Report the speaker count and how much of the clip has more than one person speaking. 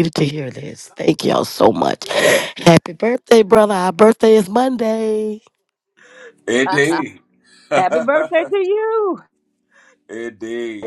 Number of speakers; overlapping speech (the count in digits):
3, no overlap